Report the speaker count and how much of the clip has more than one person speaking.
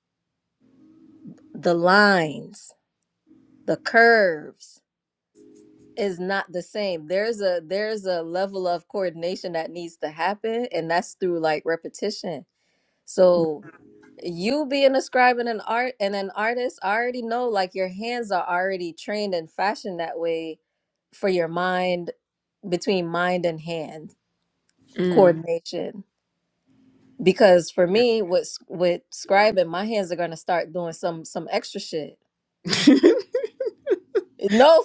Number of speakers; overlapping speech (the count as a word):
two, about 1%